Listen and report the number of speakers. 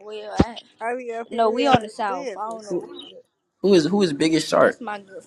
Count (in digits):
3